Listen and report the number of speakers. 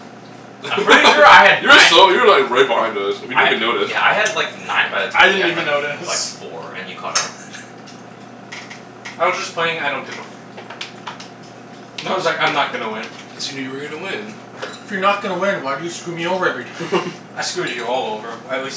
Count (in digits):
4